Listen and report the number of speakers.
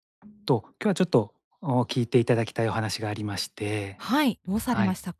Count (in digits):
2